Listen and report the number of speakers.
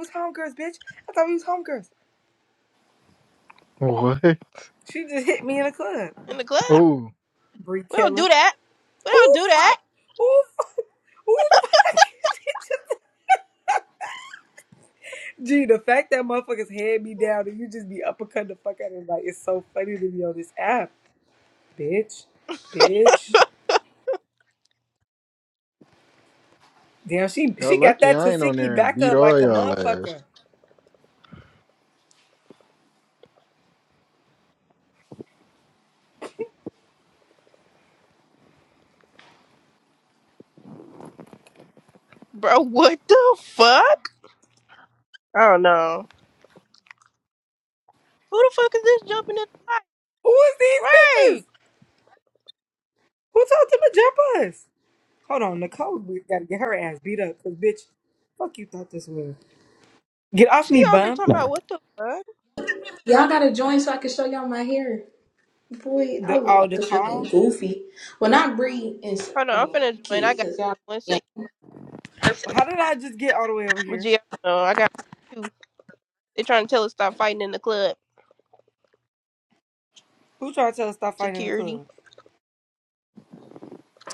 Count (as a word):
four